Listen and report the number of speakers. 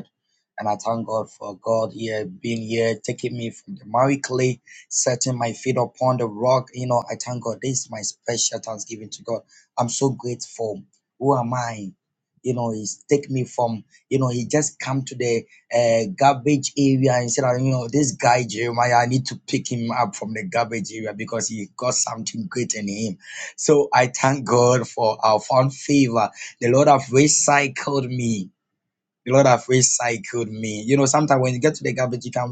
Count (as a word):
one